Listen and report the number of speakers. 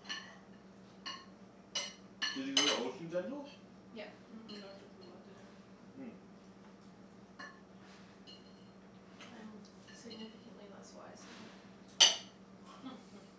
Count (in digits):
3